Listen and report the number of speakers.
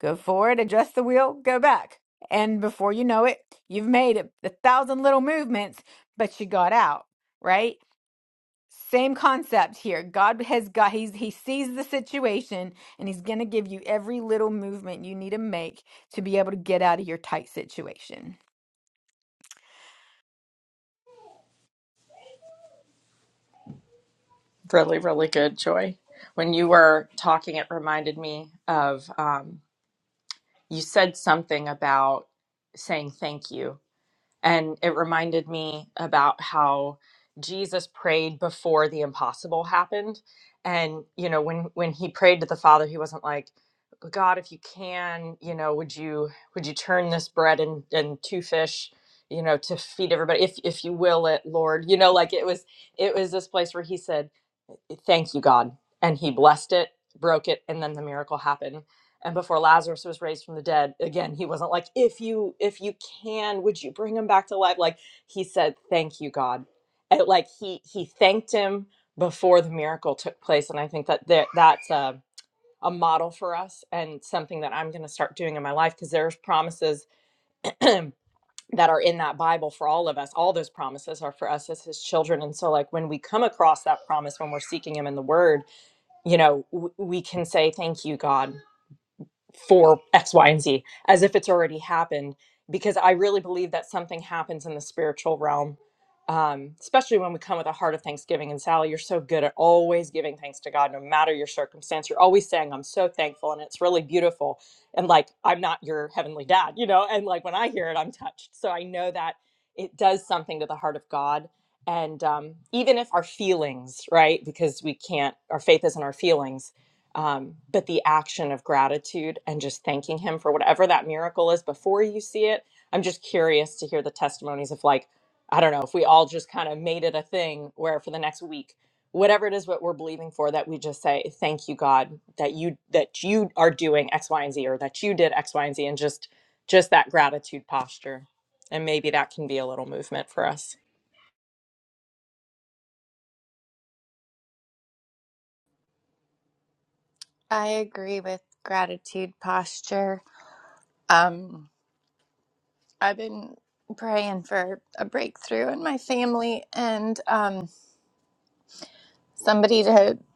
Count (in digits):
3